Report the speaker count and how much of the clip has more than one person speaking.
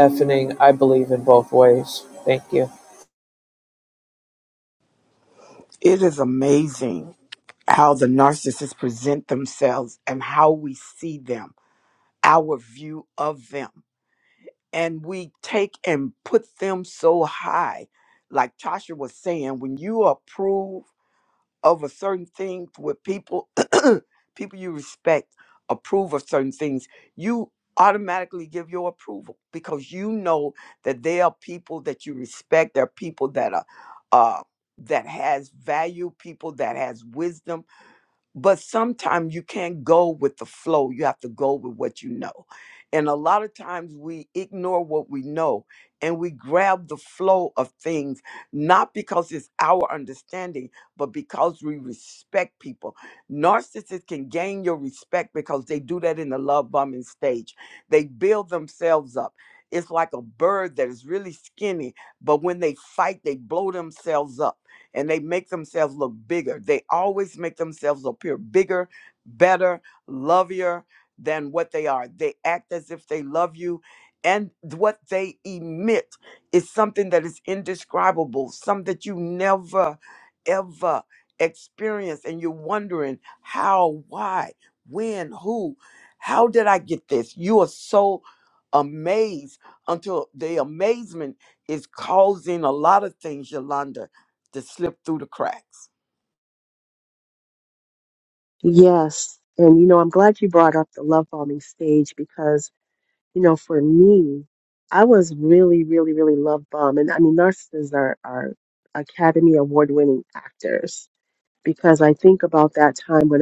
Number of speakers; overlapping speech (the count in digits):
3, no overlap